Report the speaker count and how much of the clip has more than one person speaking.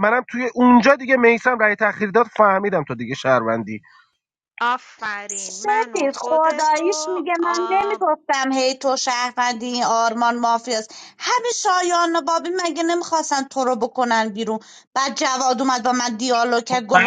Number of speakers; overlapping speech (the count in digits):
3, about 15%